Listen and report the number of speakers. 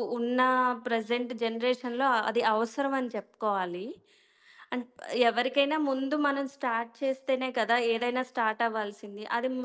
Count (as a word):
one